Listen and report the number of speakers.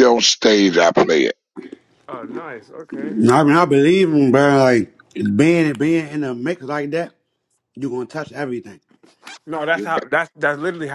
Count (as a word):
three